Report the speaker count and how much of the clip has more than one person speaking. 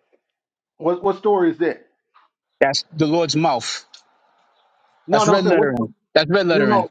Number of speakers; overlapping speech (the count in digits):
2, about 14%